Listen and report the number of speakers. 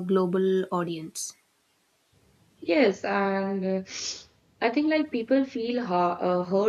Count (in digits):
2